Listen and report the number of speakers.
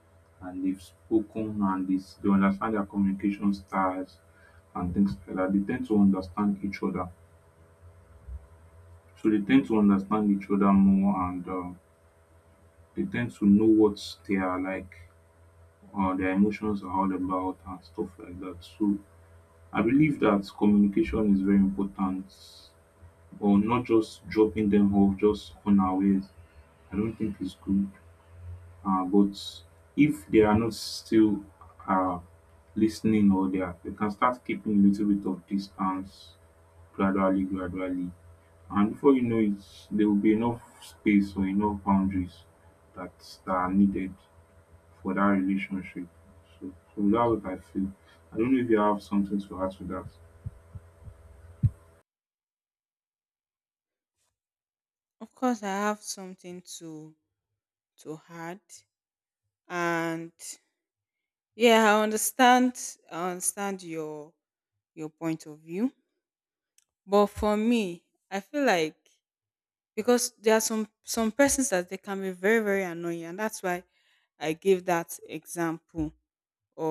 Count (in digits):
2